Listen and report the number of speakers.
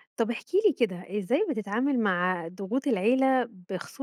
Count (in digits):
1